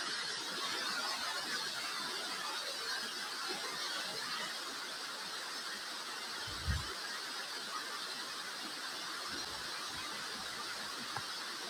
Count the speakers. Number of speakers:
0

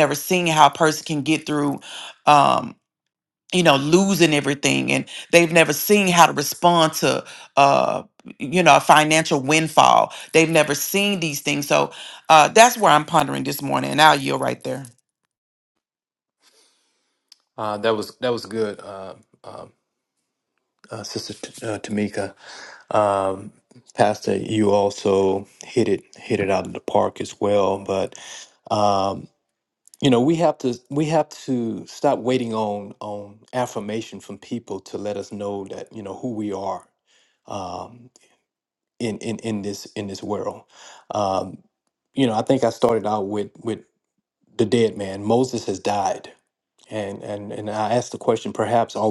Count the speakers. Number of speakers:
2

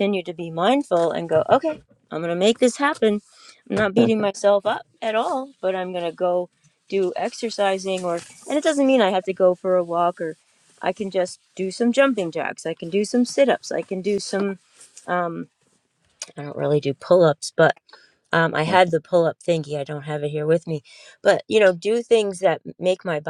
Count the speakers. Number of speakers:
1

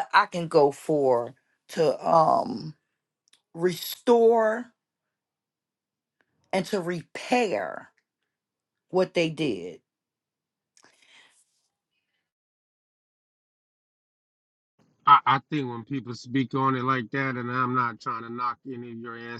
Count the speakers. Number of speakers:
2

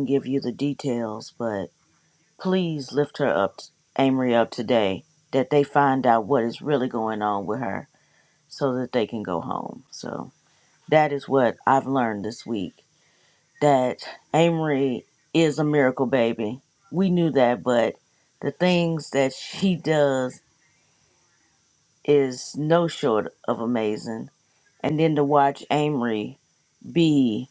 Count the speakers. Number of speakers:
1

